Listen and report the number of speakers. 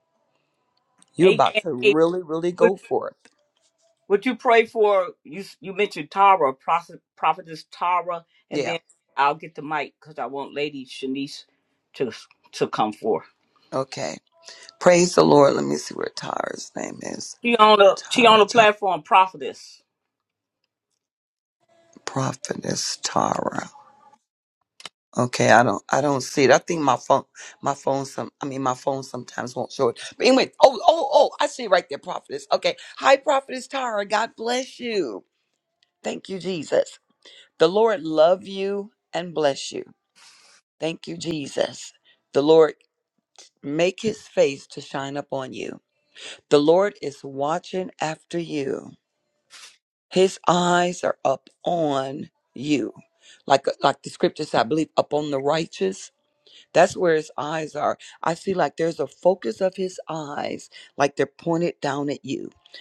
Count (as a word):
two